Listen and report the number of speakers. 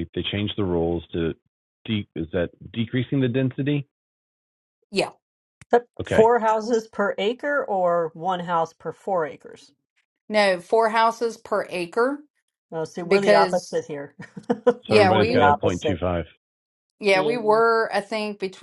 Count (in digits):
3